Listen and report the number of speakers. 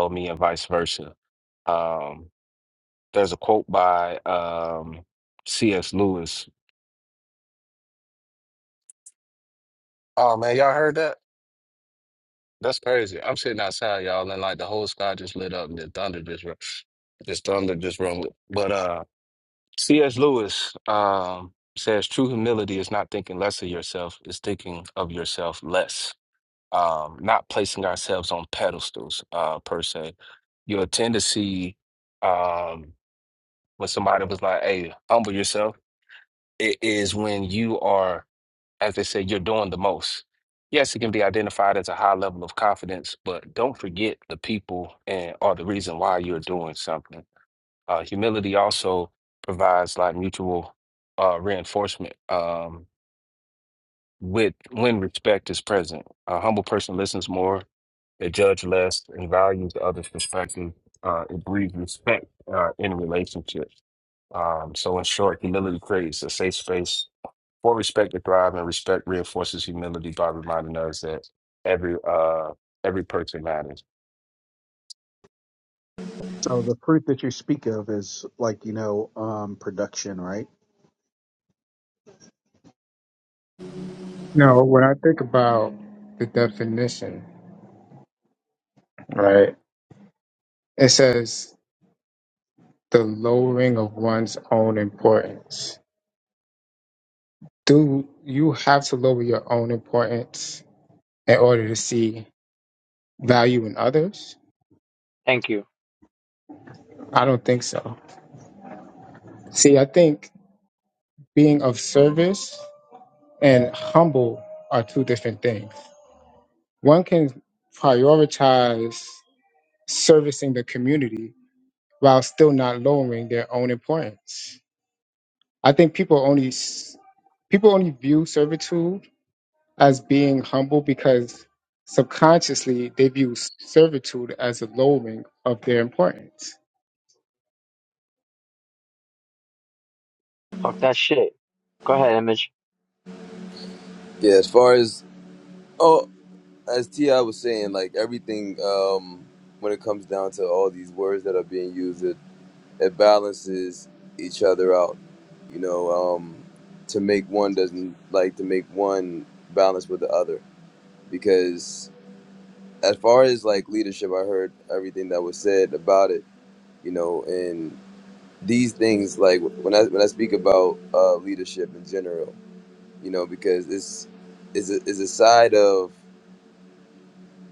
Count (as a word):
five